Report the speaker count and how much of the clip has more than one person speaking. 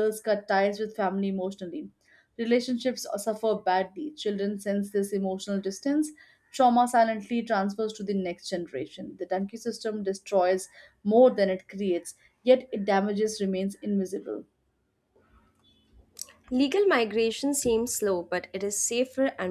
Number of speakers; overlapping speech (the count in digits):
2, no overlap